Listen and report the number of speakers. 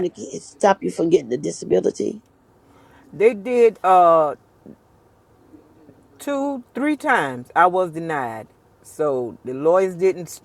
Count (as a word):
two